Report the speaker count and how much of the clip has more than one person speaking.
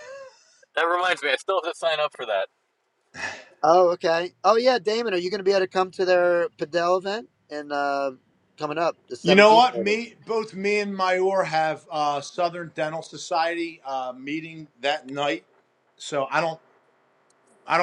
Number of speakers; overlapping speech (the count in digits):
3, about 4%